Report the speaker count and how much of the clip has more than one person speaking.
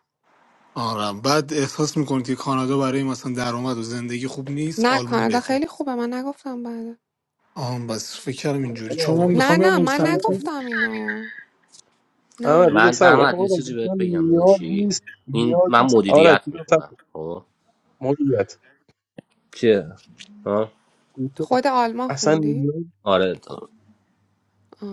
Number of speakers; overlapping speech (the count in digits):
4, about 29%